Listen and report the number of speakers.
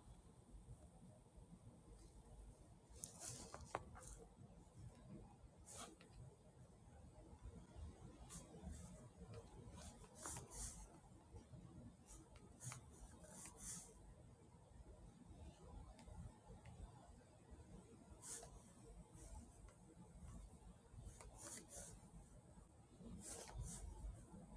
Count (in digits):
0